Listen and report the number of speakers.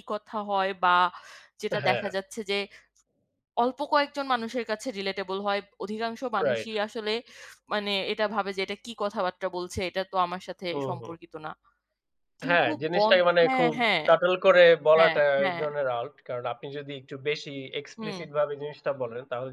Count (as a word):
two